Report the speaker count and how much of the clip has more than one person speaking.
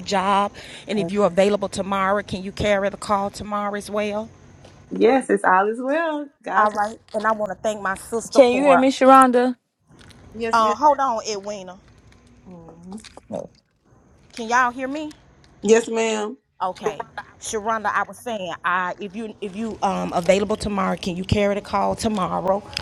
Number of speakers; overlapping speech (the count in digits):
3, about 4%